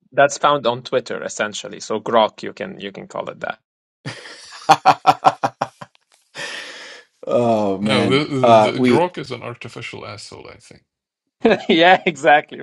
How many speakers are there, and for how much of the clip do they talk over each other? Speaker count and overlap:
3, about 10%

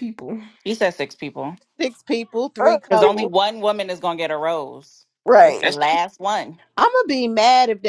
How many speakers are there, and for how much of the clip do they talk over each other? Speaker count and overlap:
3, about 11%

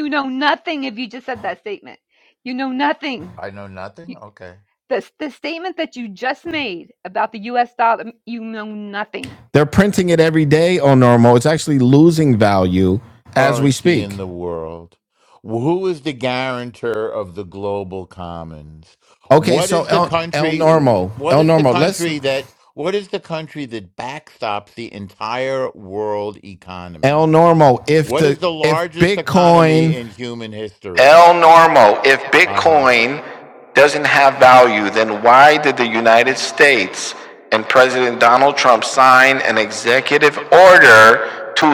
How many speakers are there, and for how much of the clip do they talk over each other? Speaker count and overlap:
3, about 14%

